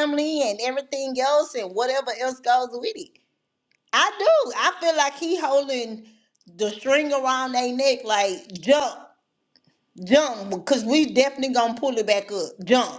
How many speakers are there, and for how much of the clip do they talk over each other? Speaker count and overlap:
one, no overlap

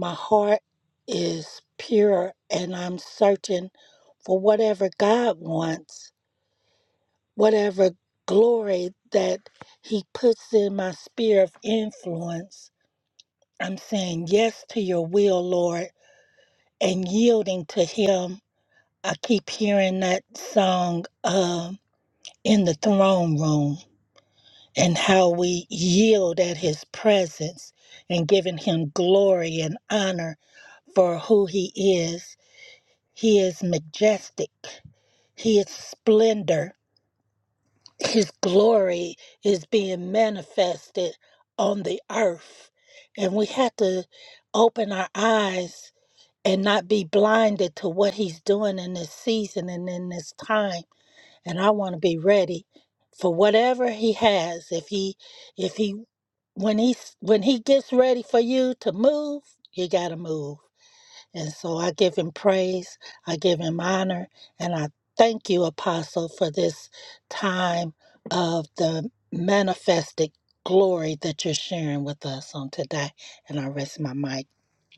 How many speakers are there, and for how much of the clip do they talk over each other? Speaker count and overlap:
one, no overlap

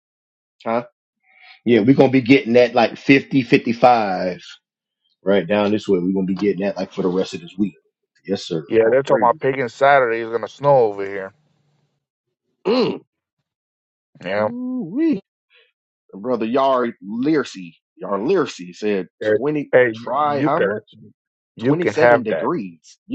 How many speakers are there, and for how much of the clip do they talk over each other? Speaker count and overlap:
three, about 11%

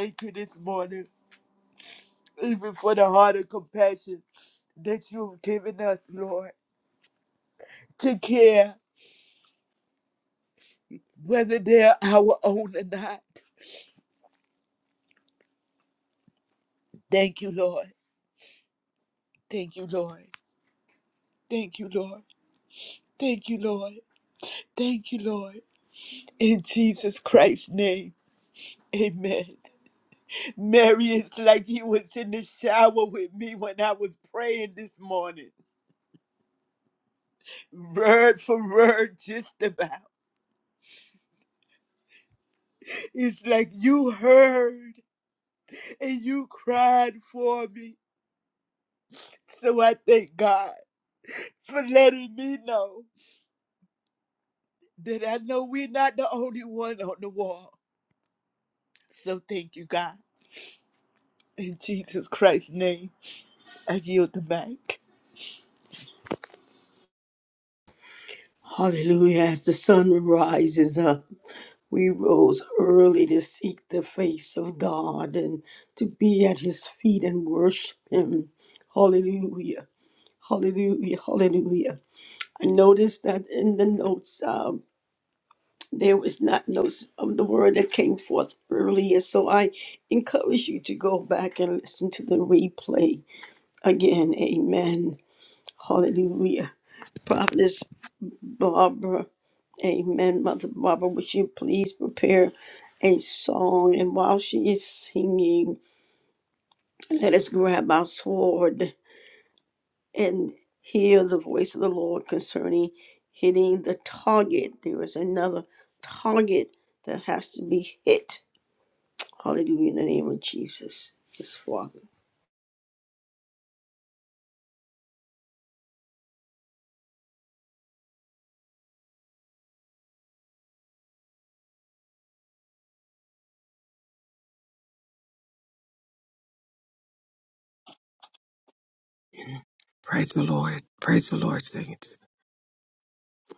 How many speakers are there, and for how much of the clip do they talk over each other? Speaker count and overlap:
three, no overlap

